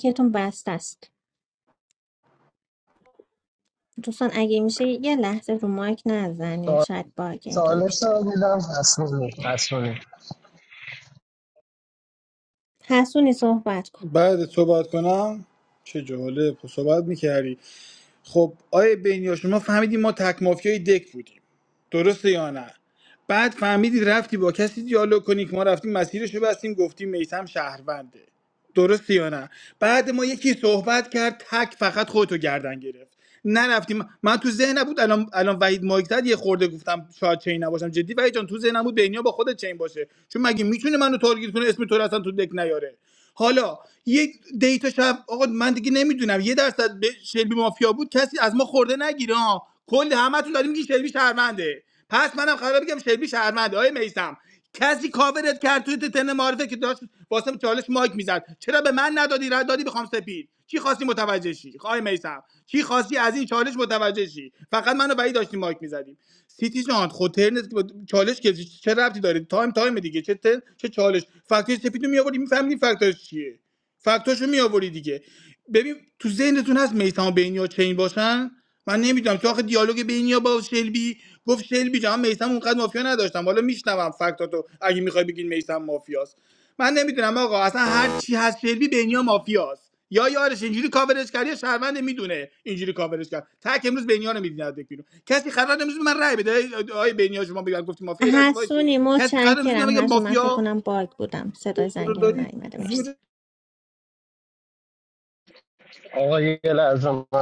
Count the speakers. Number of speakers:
3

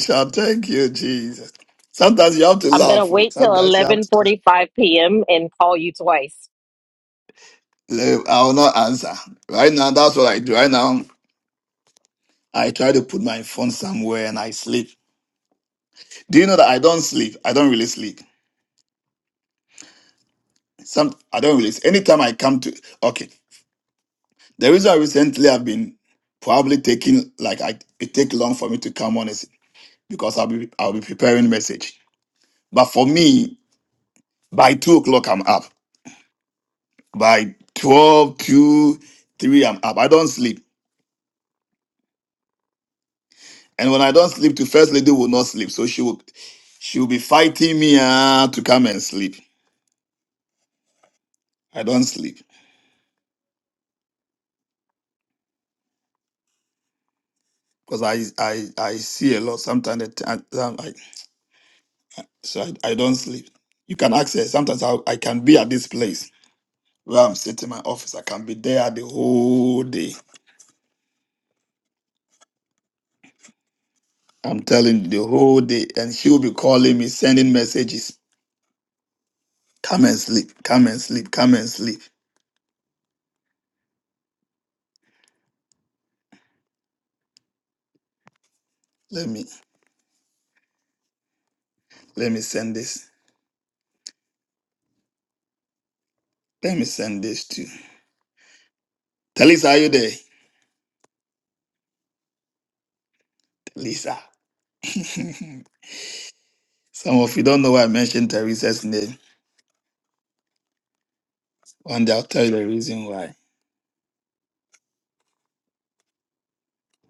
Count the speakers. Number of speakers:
2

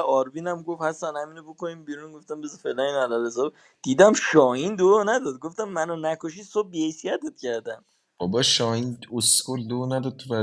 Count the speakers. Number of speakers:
2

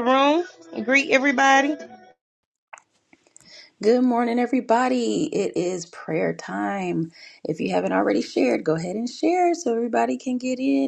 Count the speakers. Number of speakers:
2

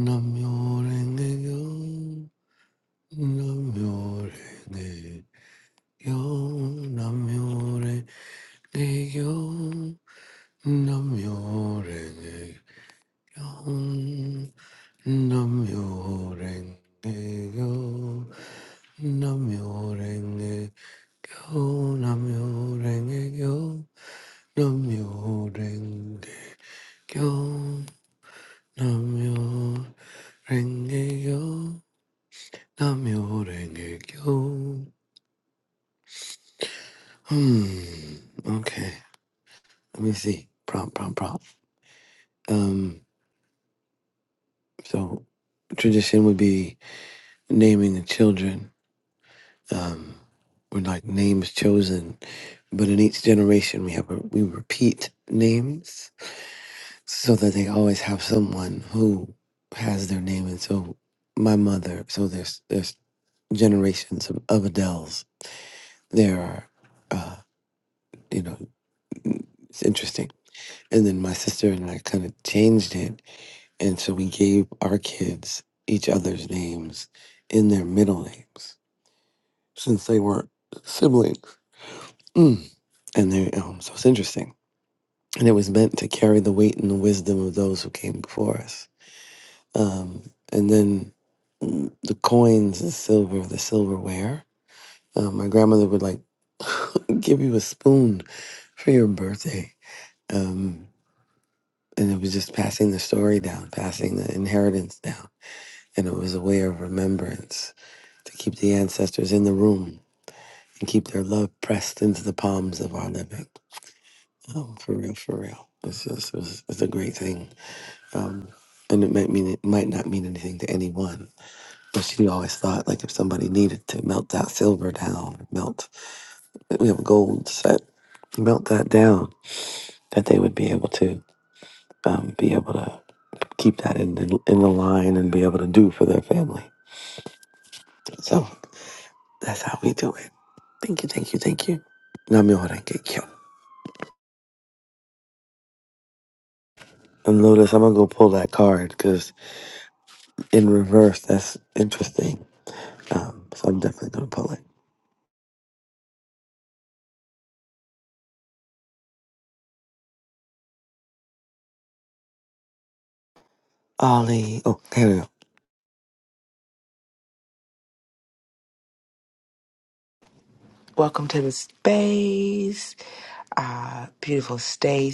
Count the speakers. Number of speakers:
2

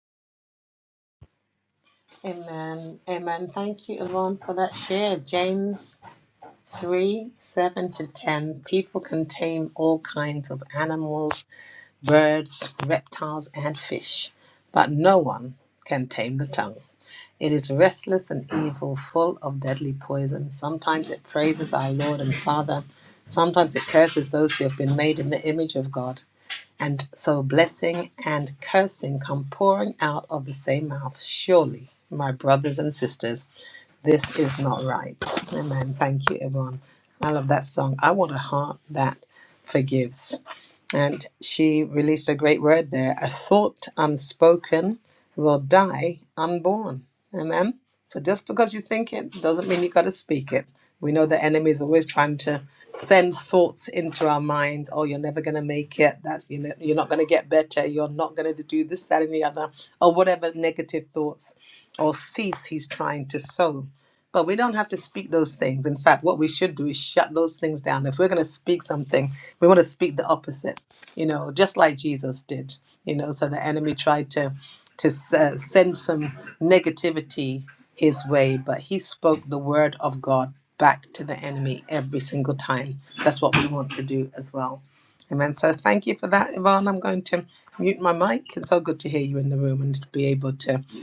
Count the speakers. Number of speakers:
1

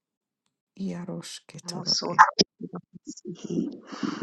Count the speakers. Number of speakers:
2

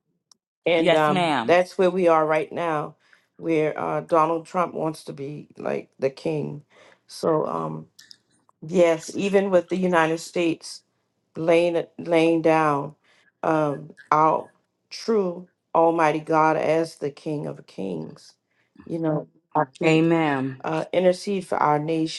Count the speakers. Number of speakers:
2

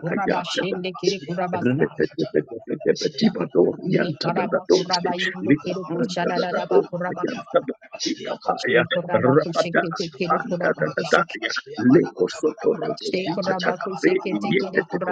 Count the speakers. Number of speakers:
3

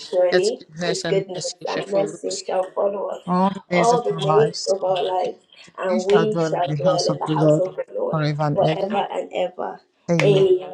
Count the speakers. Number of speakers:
2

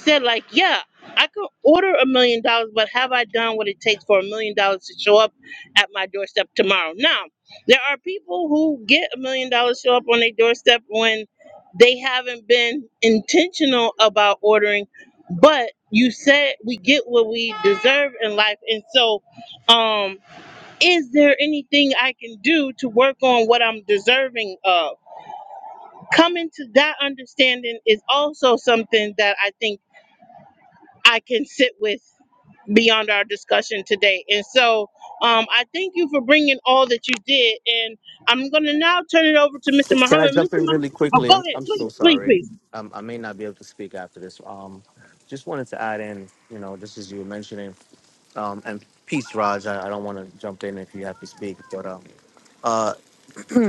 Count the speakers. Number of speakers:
2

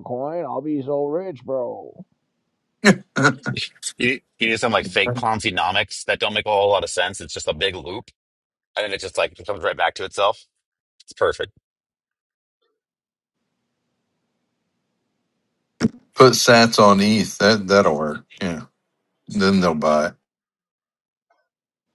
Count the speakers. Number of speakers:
3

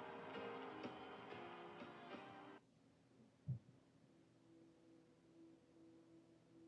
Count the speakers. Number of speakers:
0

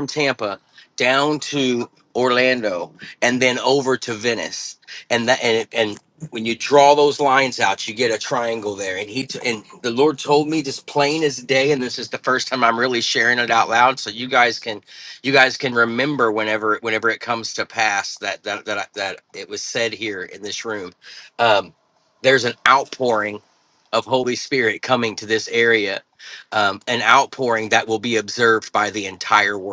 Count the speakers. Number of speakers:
1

